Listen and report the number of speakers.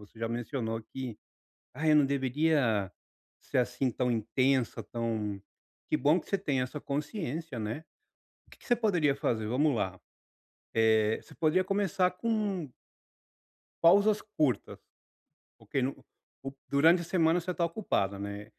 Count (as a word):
one